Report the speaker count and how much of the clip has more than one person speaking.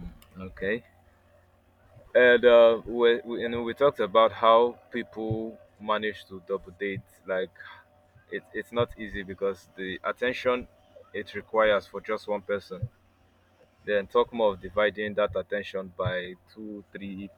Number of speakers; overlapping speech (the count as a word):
one, no overlap